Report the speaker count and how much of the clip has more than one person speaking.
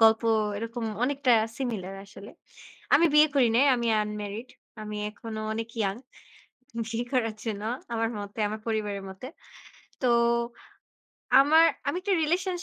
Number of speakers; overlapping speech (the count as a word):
one, no overlap